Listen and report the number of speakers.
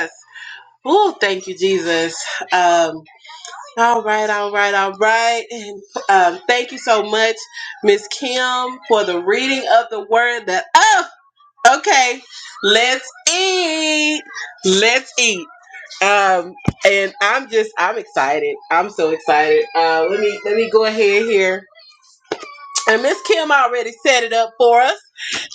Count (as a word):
one